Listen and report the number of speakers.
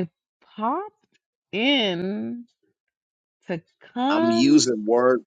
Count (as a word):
two